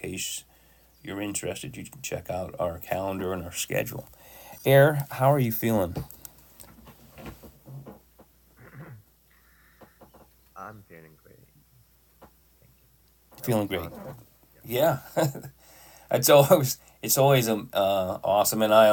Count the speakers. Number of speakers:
2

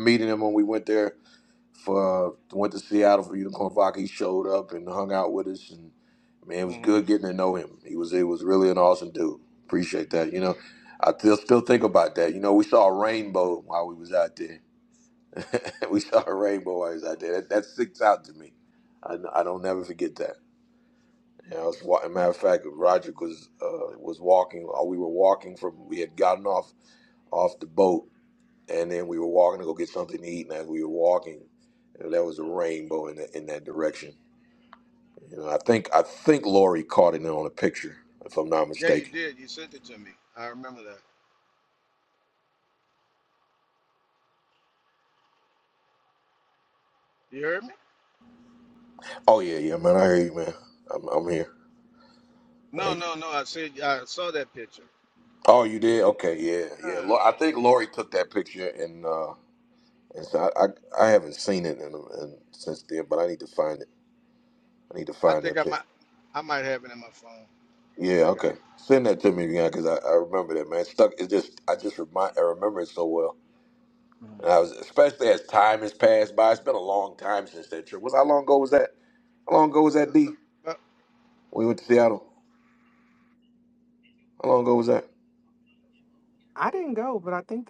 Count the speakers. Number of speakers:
3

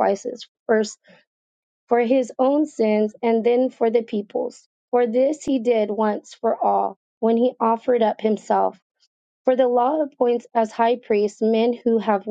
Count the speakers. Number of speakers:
1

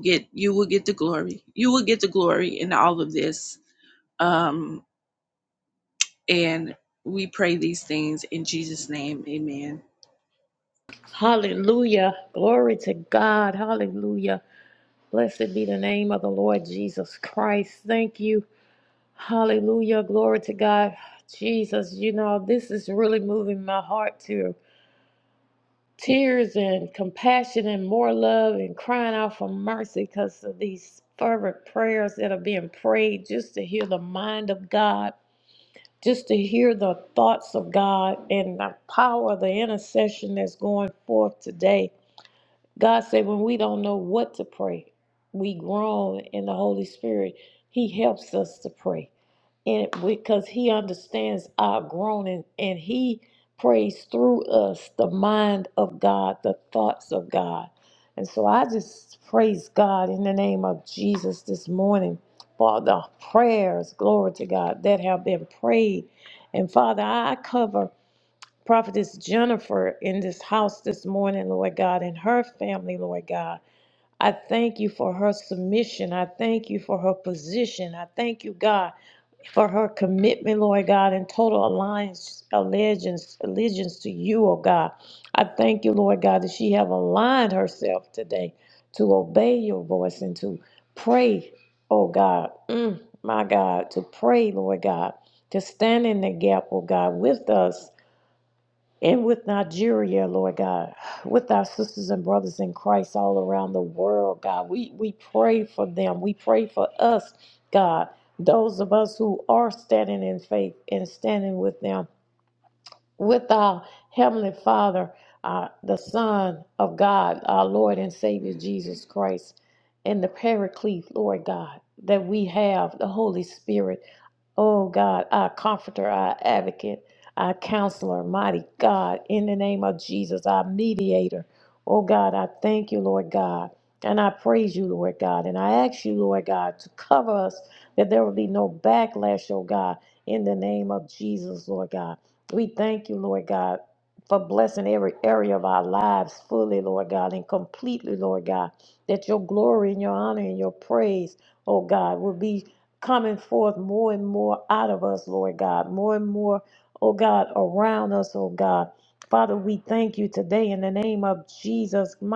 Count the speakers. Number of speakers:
2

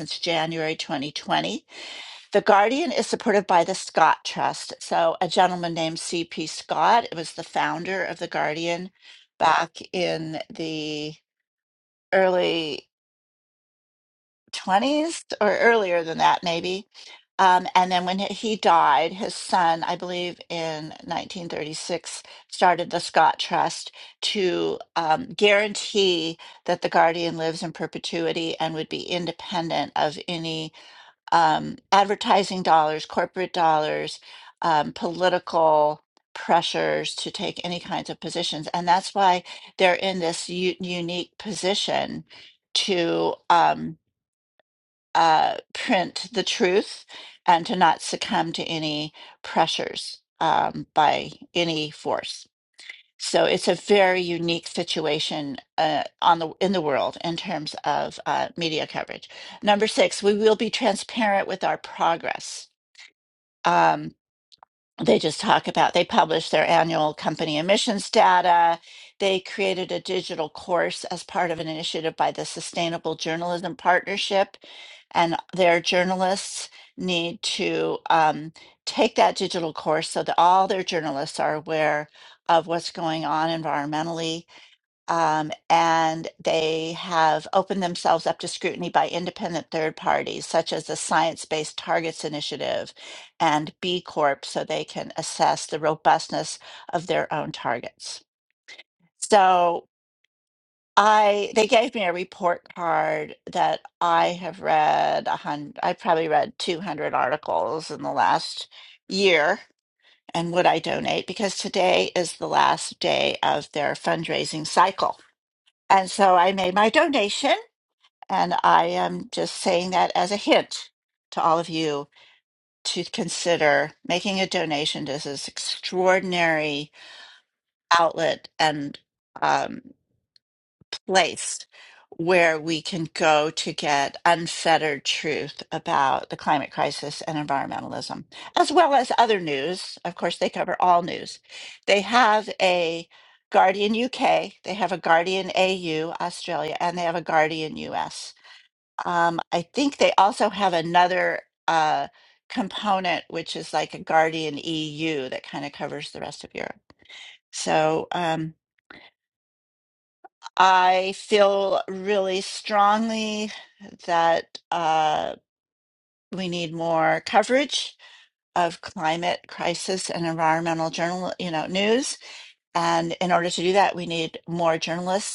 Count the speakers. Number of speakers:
1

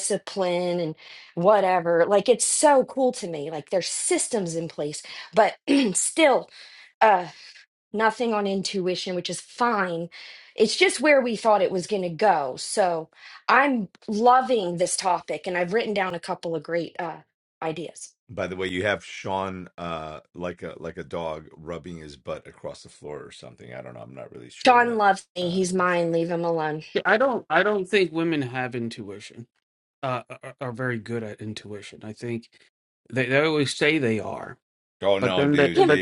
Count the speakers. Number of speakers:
3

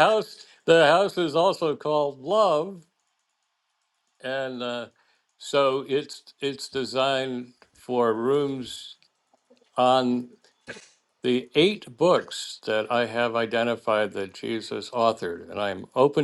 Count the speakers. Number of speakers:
1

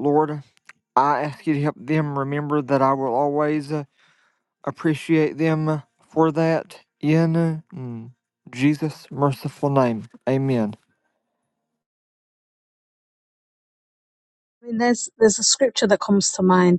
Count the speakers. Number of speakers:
2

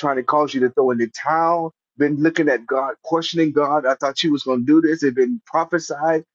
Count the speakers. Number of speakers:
1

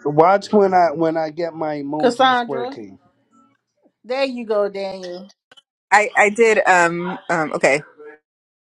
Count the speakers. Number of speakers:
3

